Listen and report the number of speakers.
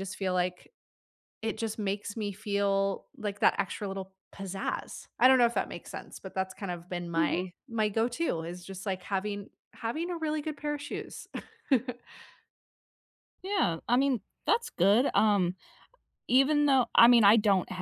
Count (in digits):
2